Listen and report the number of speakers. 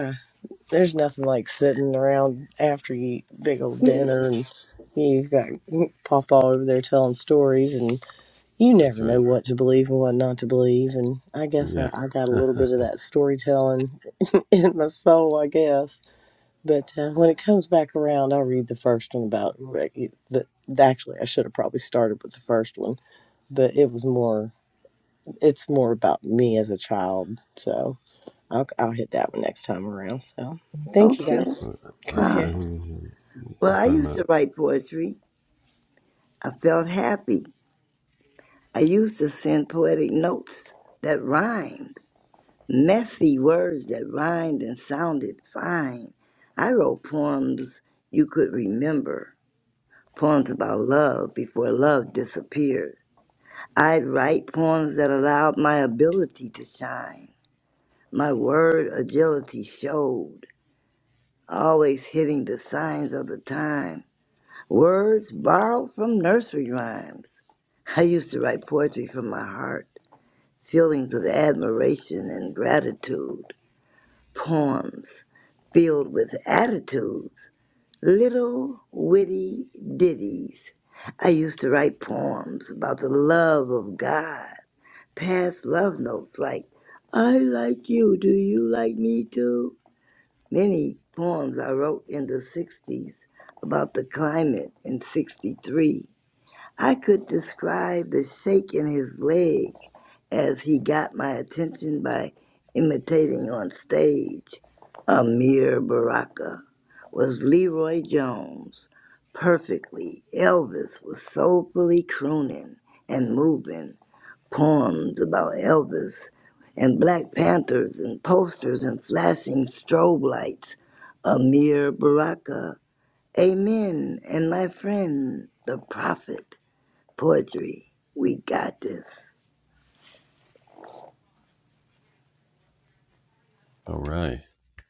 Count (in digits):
3